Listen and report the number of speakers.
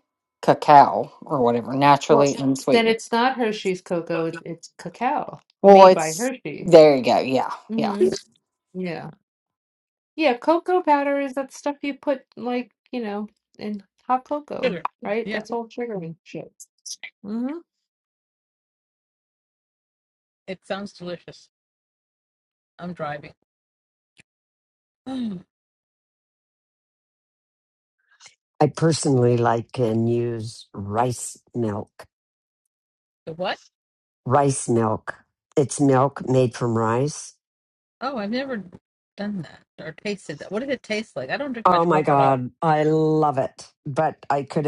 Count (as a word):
four